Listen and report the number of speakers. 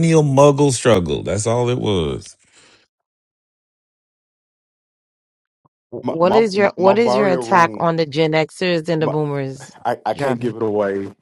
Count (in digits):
3